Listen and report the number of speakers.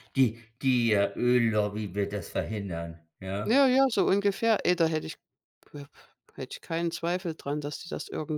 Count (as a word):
two